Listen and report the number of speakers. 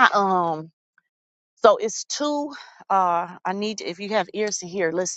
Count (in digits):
1